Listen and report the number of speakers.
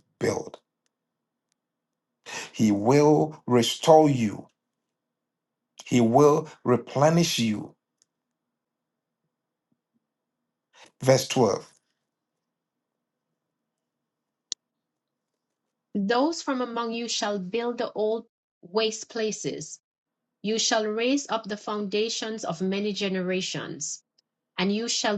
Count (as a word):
two